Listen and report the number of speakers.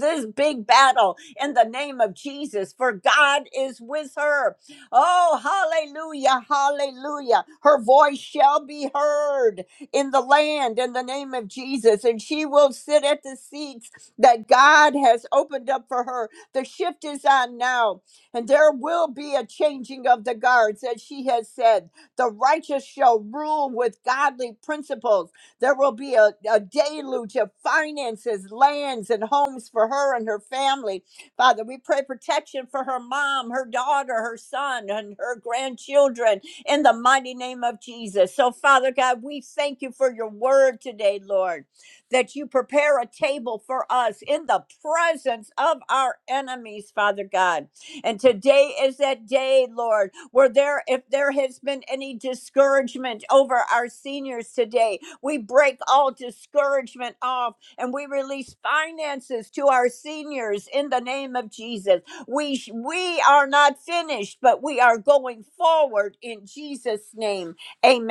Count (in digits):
1